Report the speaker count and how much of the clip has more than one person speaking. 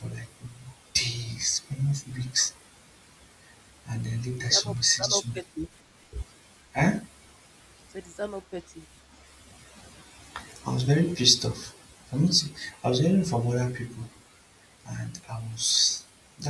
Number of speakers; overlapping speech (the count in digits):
2, about 5%